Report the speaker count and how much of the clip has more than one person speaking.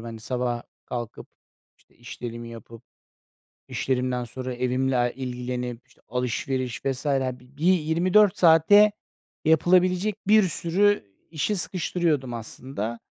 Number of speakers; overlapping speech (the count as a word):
one, no overlap